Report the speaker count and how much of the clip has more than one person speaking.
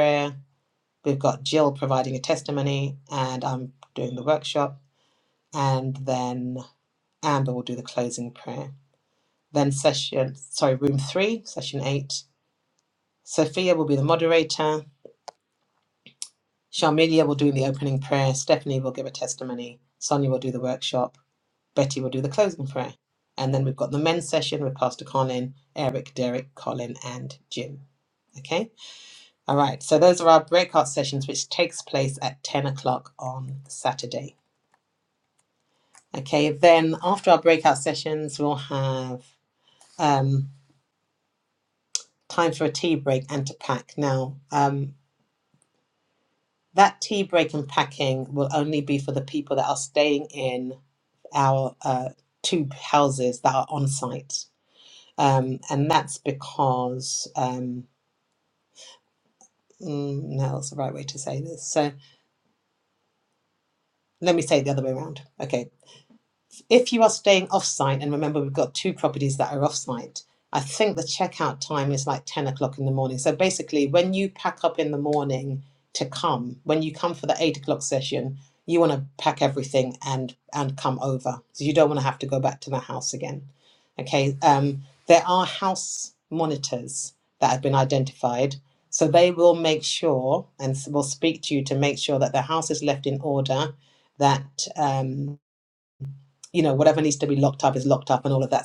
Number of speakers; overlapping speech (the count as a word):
one, no overlap